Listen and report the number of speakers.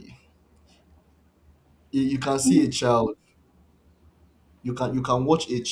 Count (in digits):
1